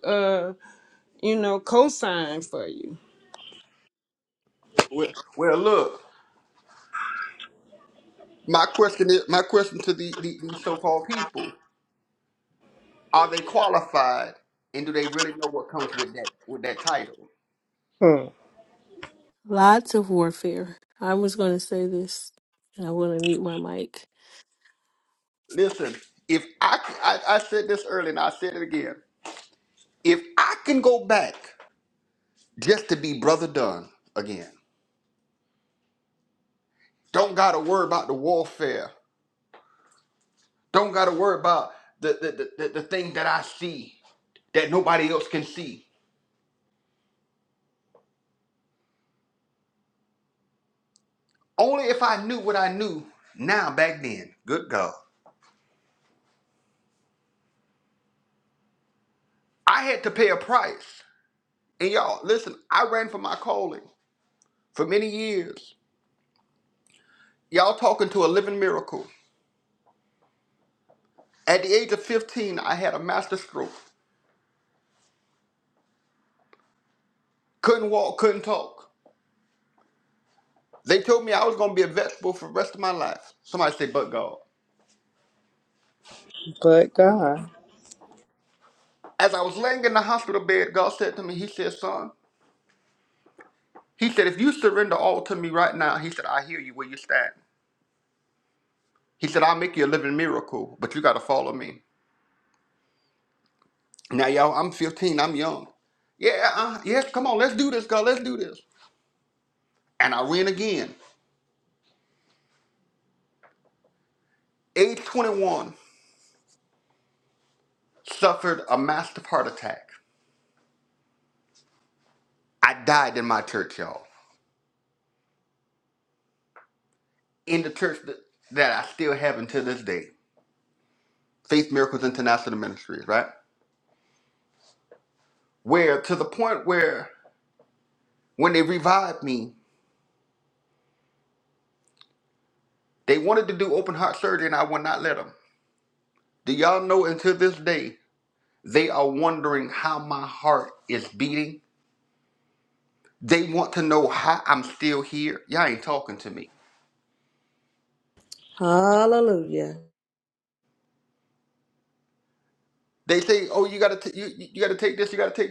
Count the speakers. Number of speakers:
four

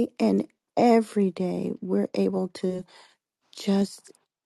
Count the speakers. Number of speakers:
one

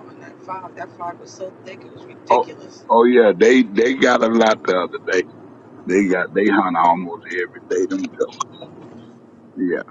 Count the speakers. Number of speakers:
two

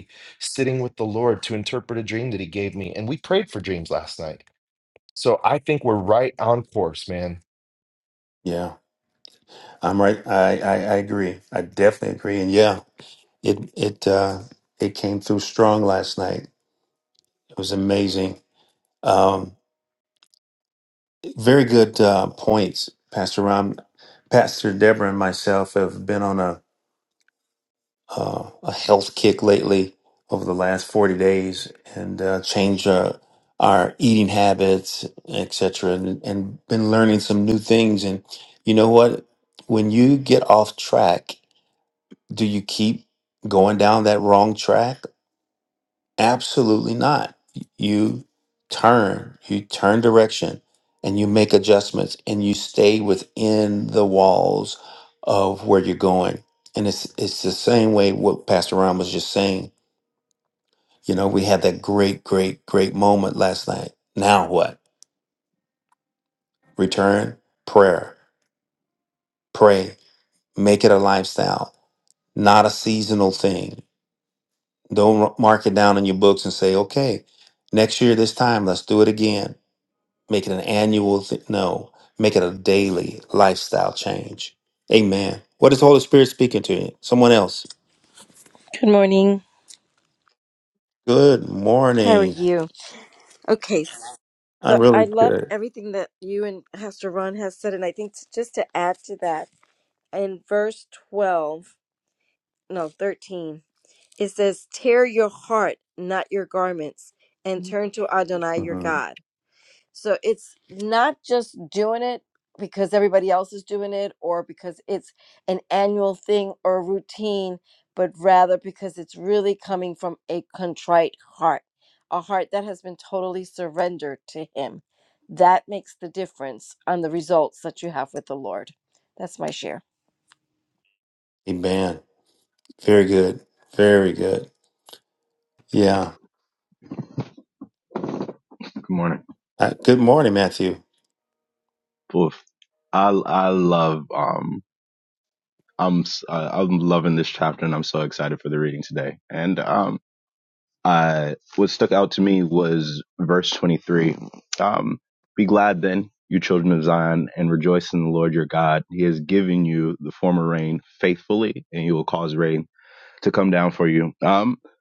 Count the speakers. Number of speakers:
four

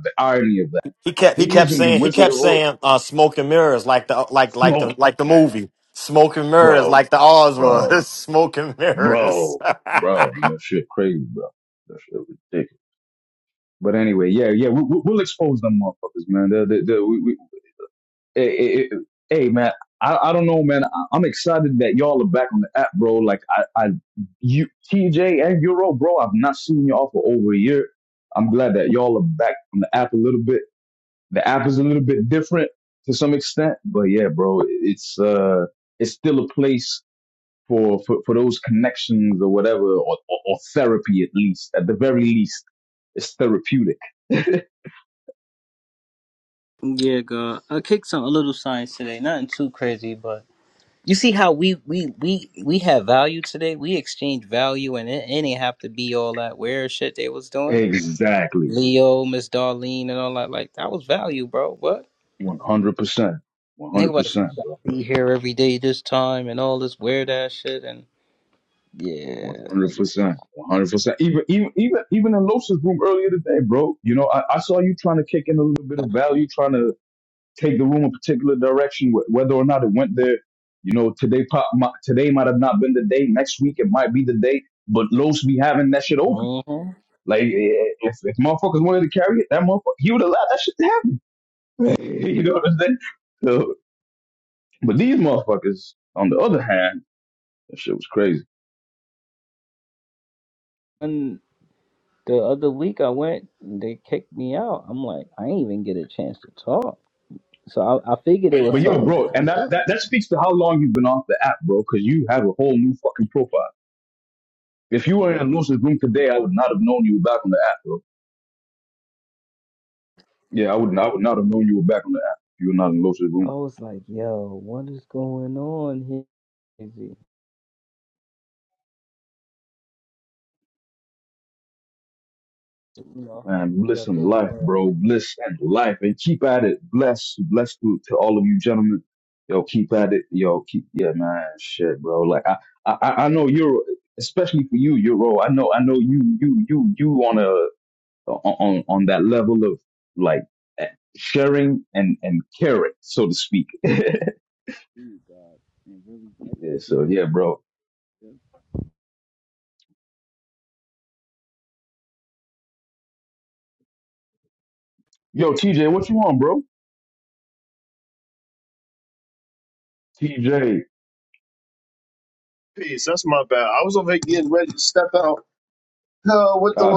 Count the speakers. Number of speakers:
four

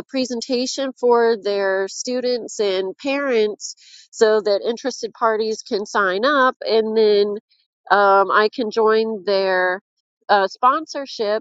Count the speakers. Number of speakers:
one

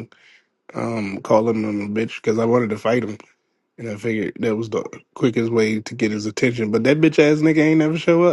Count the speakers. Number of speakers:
one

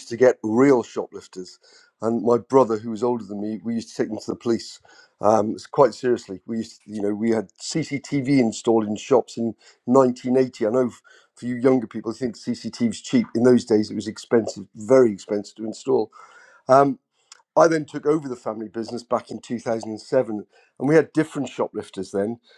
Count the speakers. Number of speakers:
one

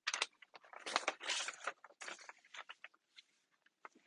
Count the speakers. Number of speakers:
zero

